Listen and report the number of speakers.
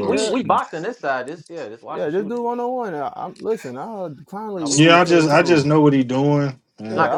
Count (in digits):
3